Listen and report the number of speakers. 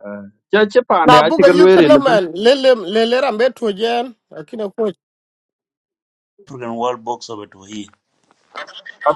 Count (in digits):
3